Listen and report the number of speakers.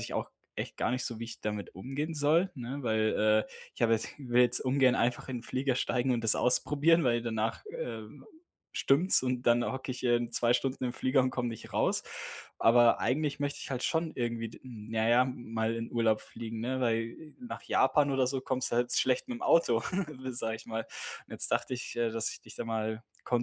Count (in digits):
1